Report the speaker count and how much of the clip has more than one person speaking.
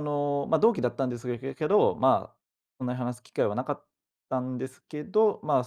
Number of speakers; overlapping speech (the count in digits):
1, no overlap